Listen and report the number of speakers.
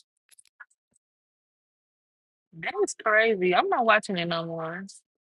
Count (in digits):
1